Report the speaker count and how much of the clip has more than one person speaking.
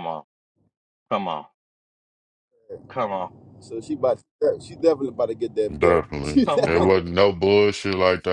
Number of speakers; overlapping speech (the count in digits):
3, about 15%